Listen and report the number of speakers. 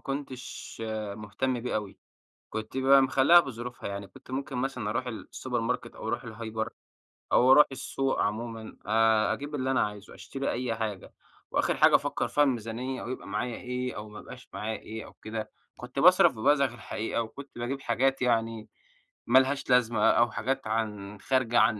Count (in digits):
1